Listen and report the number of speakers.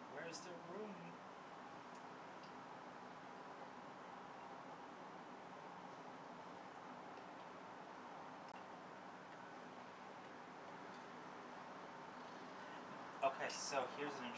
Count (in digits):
1